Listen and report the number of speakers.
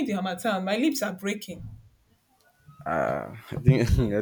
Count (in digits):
2